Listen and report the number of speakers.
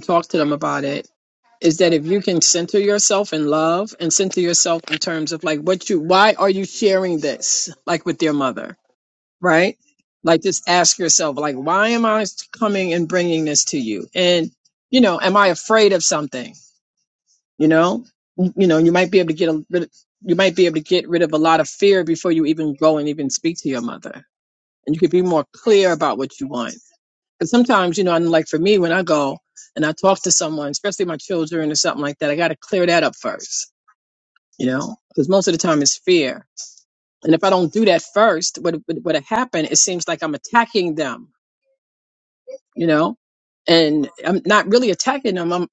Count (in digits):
1